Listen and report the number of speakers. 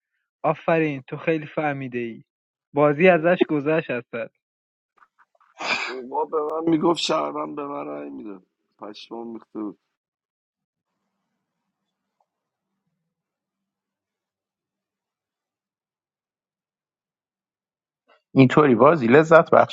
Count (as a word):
three